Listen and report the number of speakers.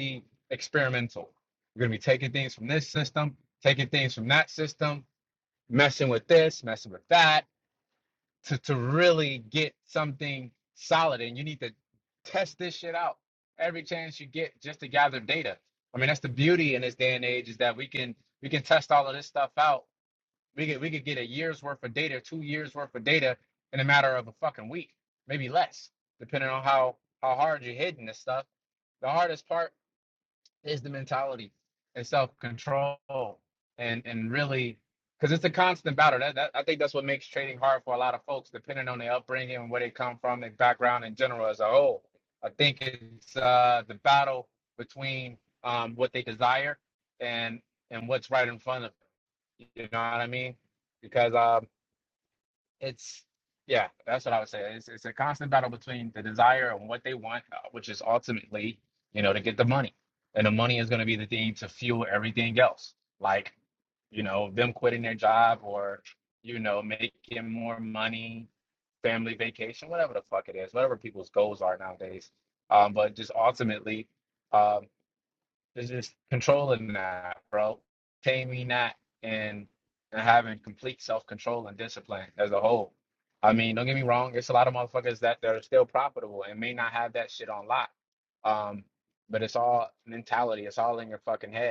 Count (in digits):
1